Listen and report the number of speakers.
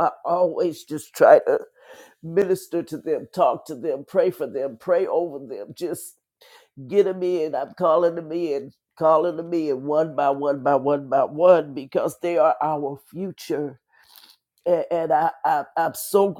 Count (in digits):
1